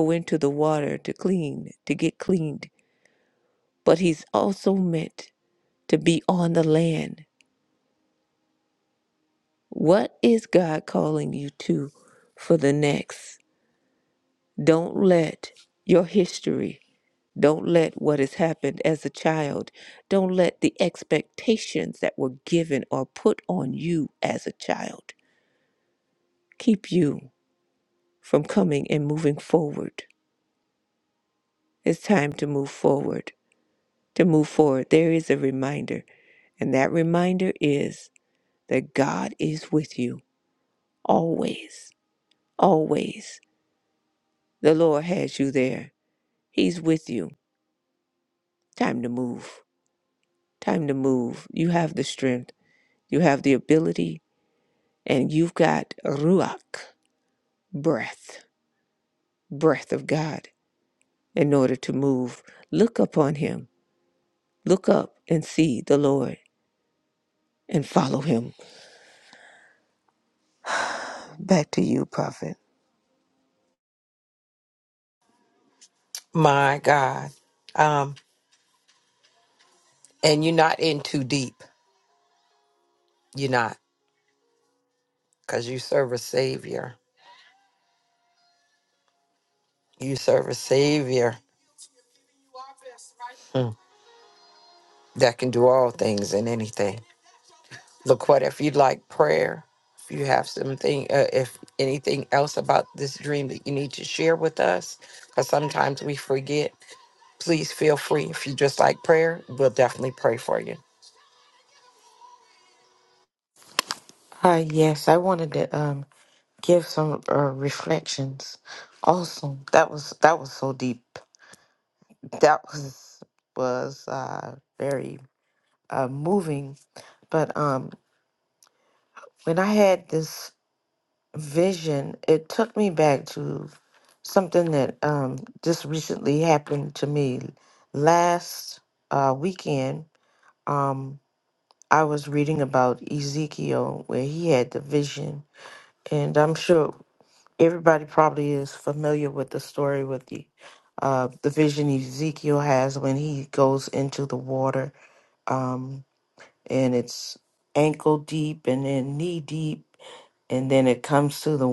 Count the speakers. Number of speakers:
three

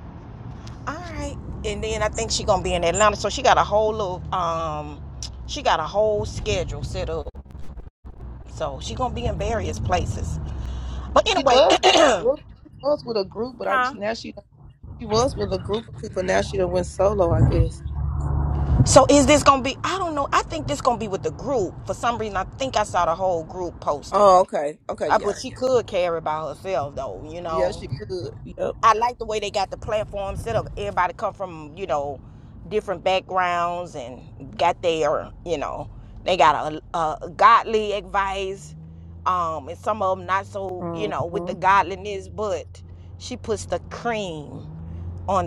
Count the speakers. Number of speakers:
two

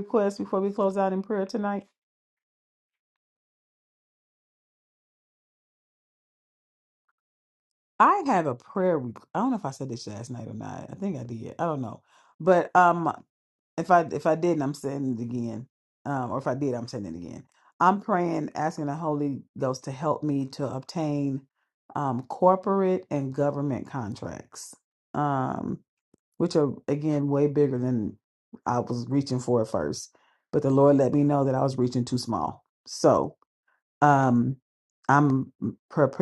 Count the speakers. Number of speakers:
one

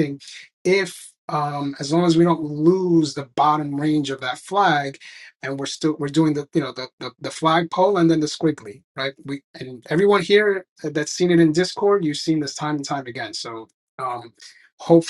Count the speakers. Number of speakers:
one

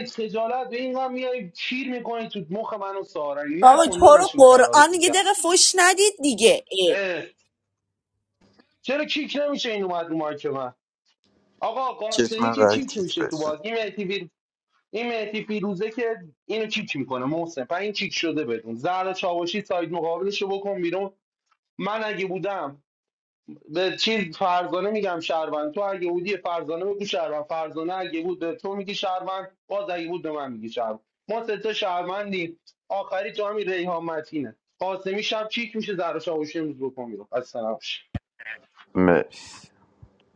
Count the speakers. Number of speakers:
three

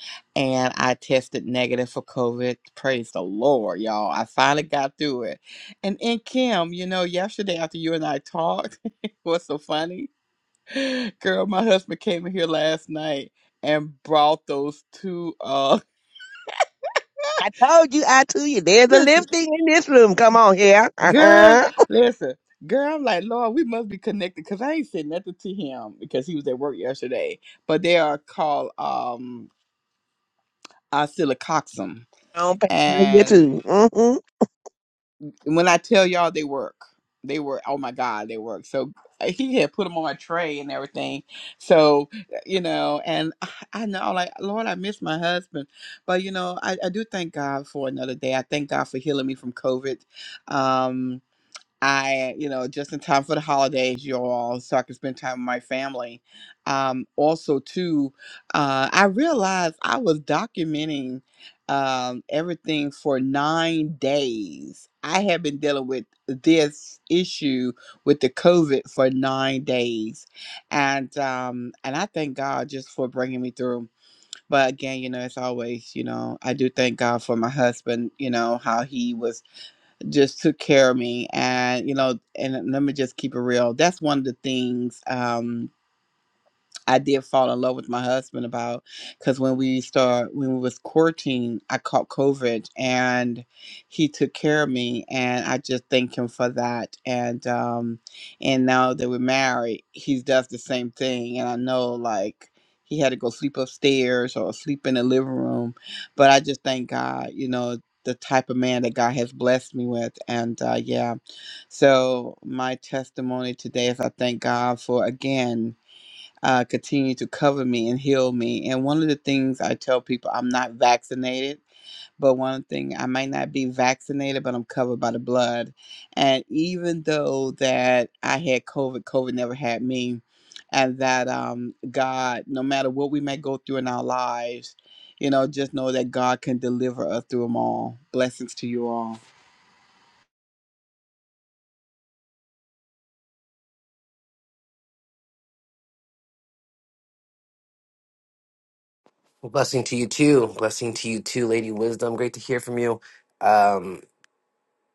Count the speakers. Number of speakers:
three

